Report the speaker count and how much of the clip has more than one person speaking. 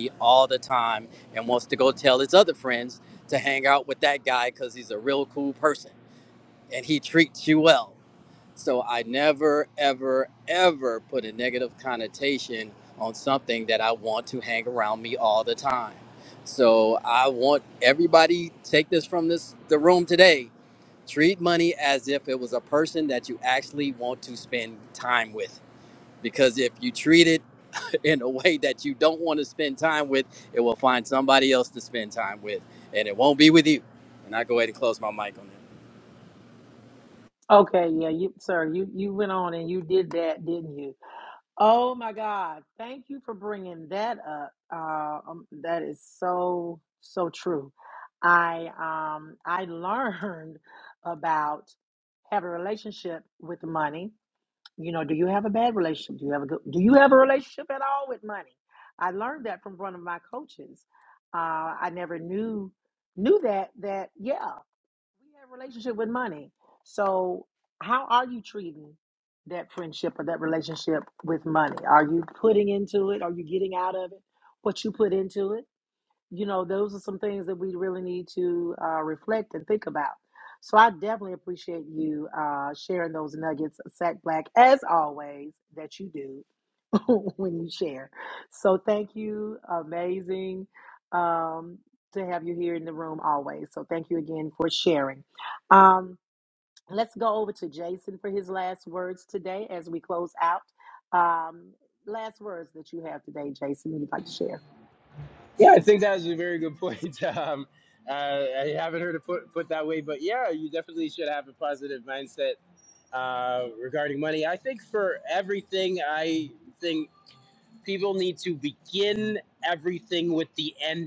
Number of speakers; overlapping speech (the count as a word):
three, no overlap